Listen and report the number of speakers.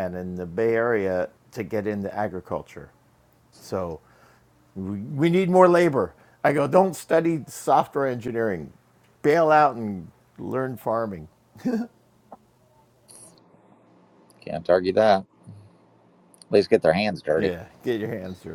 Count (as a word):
two